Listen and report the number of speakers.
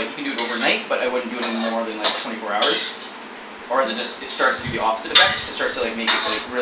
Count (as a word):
one